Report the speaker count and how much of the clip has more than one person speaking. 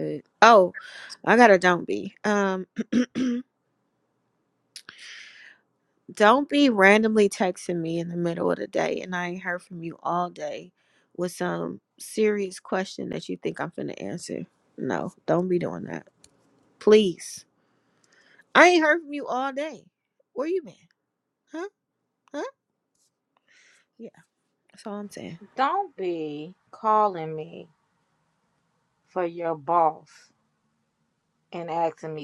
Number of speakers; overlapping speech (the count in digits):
2, no overlap